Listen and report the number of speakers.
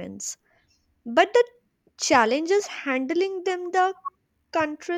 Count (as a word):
one